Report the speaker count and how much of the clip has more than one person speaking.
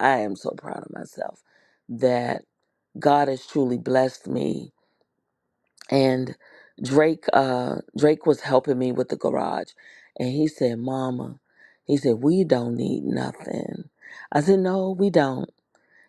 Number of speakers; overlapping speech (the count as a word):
one, no overlap